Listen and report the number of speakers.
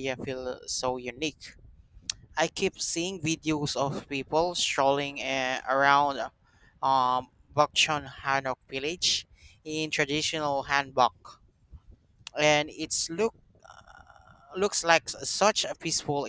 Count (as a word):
one